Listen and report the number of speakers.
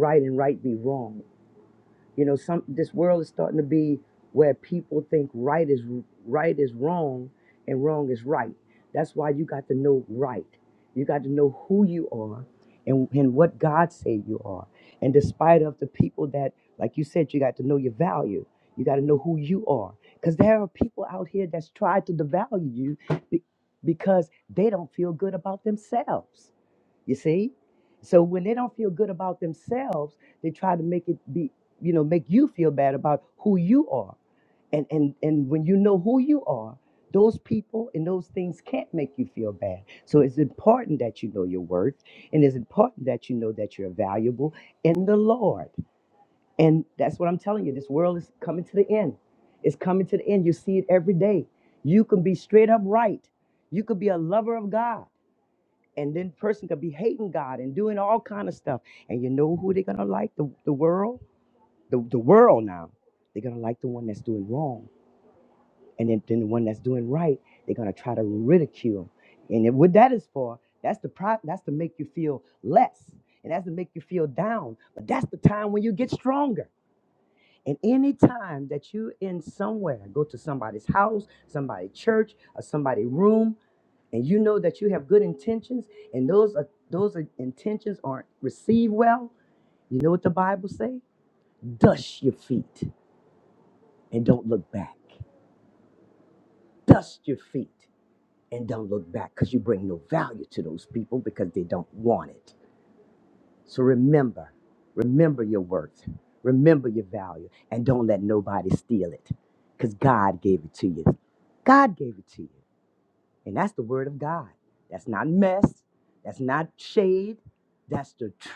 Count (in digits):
1